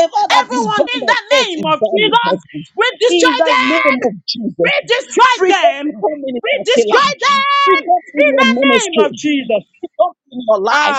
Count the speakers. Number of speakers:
two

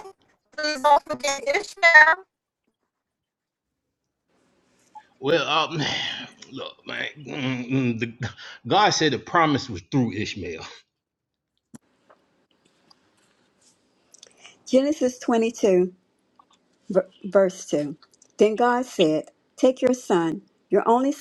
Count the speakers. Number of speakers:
three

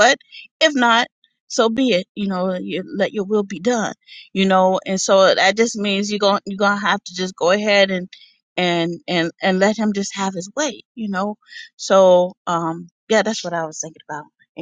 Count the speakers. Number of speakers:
one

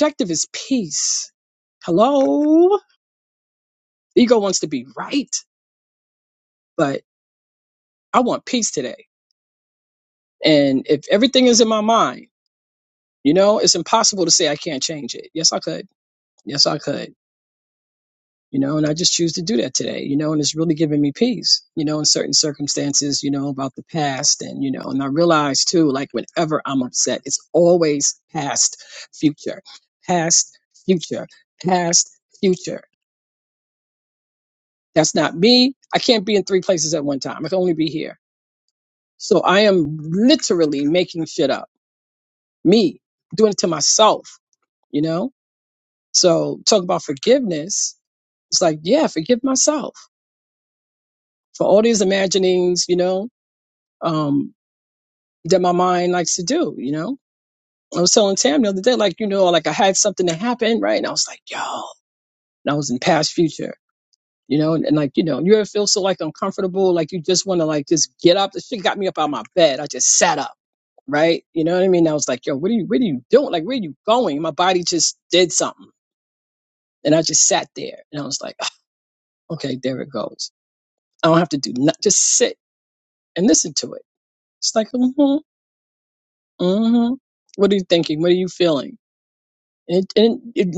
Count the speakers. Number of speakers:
one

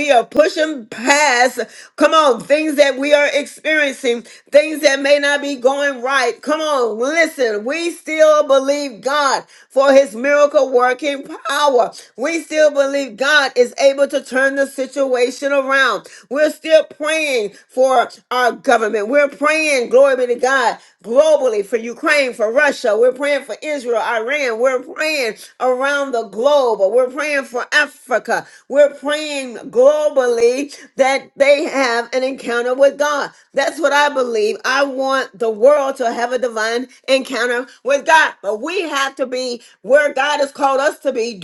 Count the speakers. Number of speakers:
one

